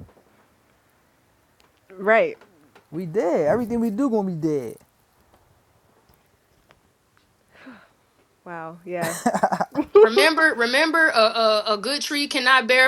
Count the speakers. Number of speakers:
3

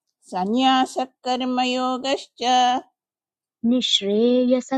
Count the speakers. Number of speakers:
2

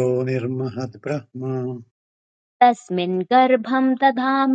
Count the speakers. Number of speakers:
2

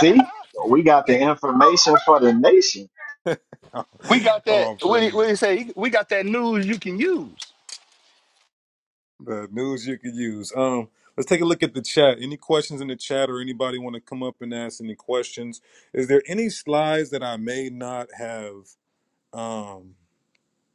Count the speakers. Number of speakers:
3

